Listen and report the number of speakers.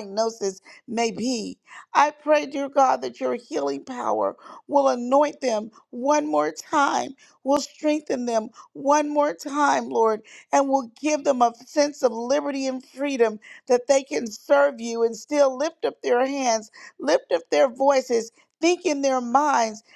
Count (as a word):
one